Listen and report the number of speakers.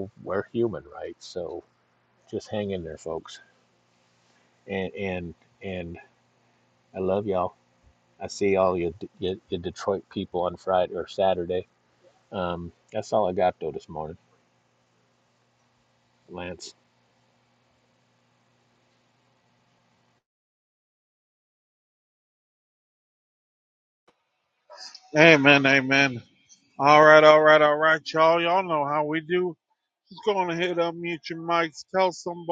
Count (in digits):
2